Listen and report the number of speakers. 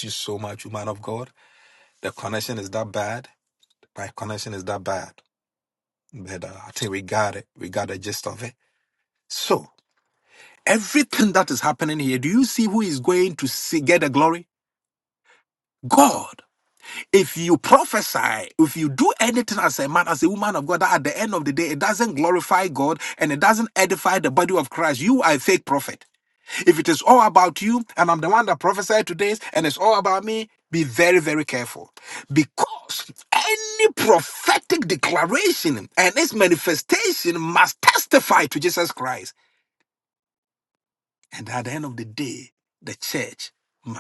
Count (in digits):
1